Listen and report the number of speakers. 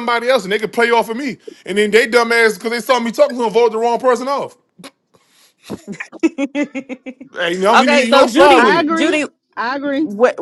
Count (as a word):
three